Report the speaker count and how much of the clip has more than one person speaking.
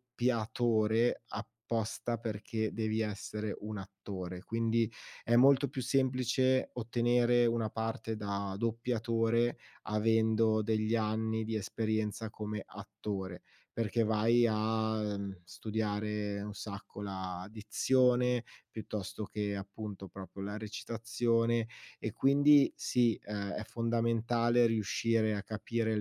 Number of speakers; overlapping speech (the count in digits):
1, no overlap